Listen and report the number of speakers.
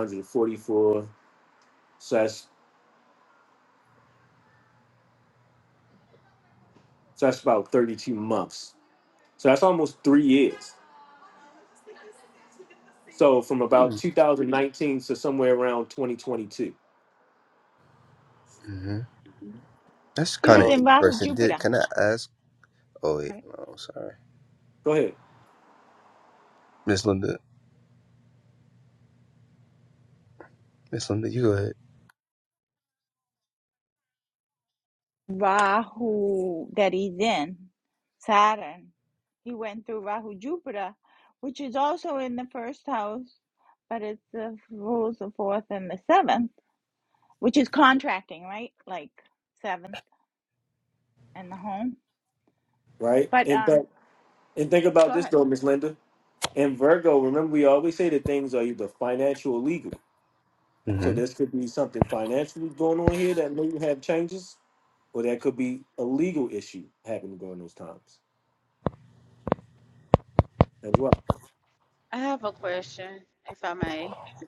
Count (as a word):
four